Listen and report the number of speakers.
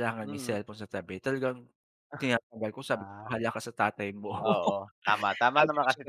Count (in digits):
2